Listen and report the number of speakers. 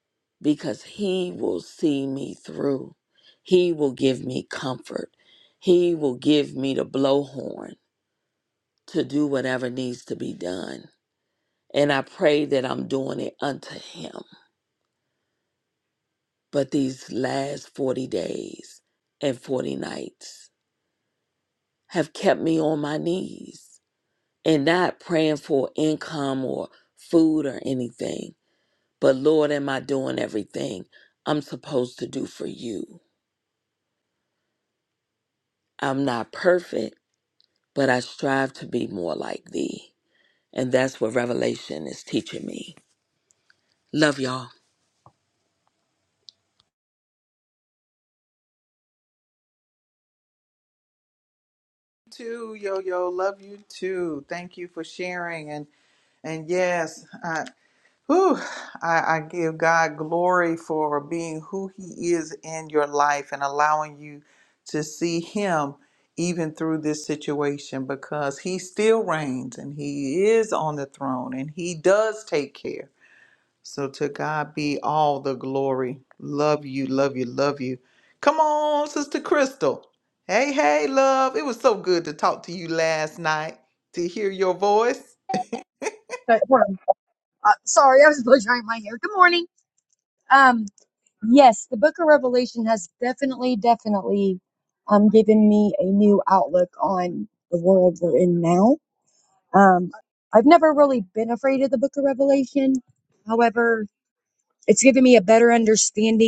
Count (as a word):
three